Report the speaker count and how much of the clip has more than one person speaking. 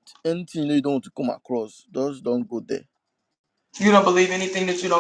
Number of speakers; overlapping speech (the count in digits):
2, no overlap